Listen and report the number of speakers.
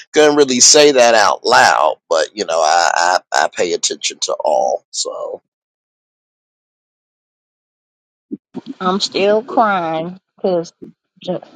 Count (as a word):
two